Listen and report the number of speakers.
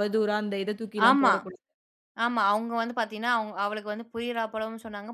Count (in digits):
2